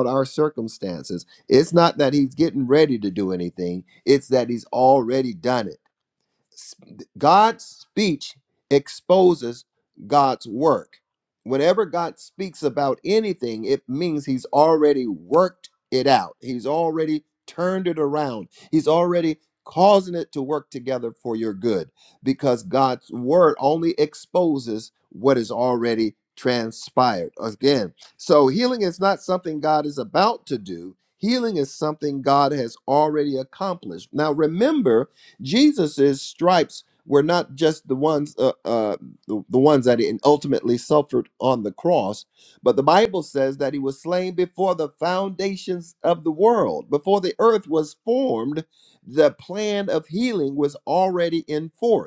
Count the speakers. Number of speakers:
one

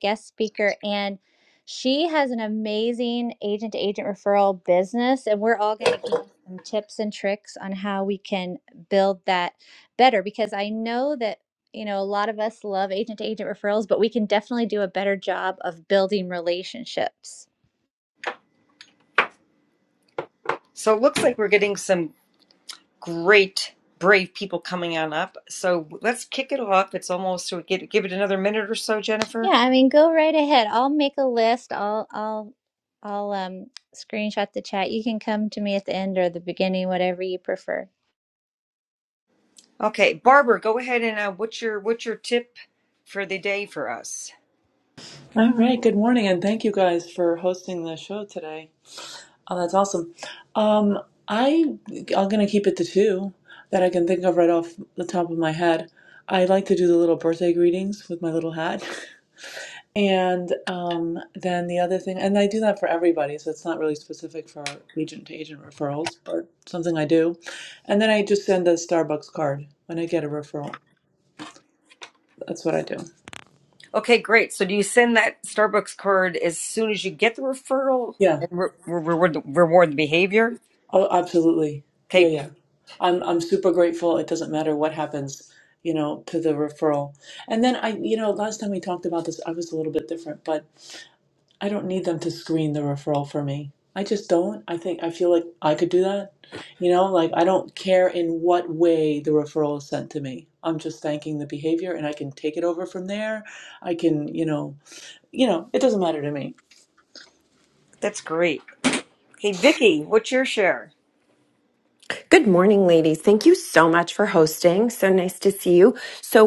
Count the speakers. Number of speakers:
four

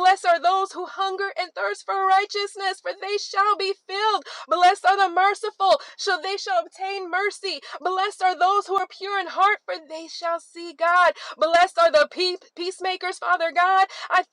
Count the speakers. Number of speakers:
one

